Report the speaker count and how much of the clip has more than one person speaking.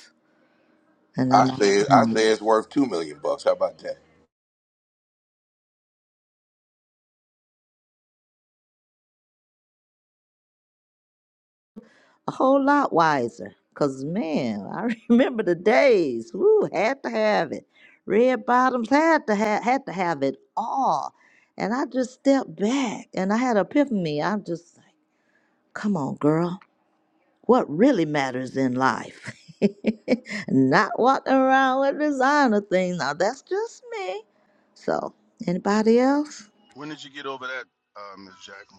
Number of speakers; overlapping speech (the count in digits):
3, about 2%